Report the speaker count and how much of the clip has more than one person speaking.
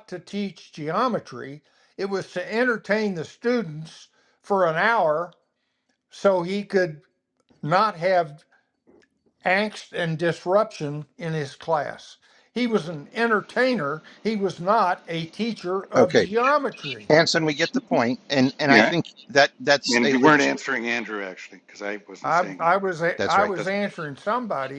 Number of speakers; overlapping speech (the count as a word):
three, about 11%